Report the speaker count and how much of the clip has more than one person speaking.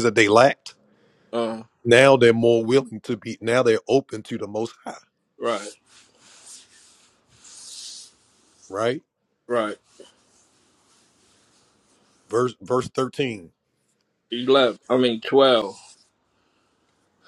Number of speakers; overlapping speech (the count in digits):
2, no overlap